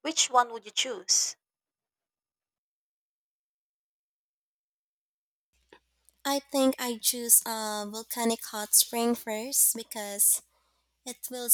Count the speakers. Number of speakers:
two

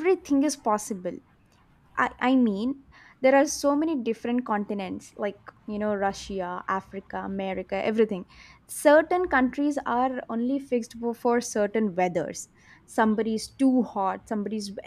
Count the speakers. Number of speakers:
one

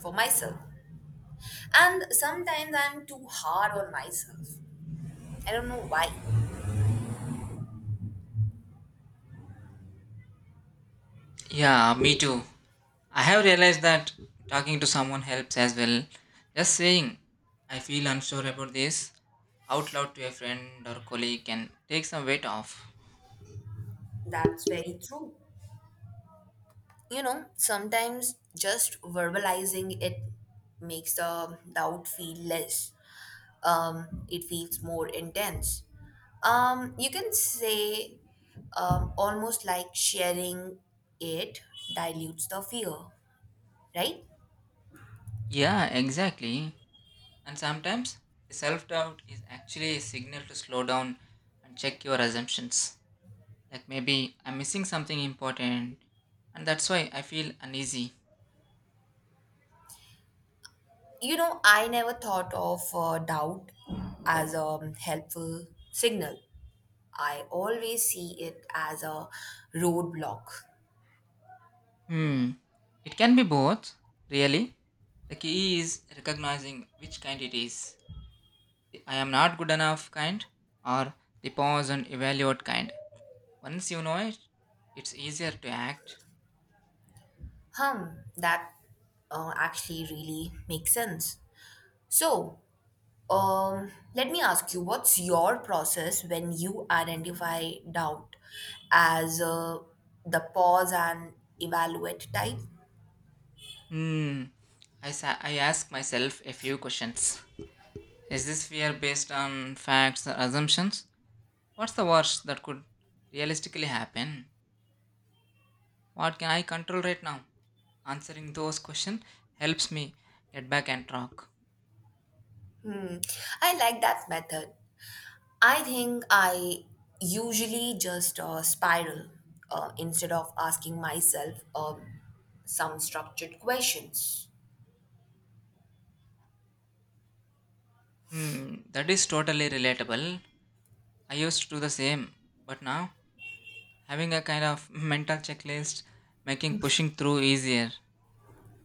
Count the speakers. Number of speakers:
two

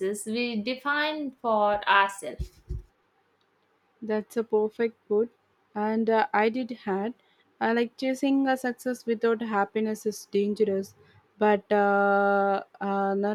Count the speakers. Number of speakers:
two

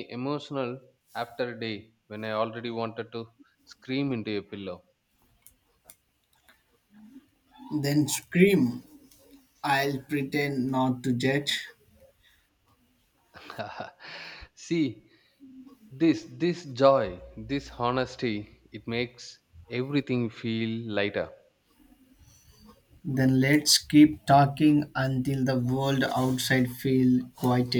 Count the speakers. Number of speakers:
two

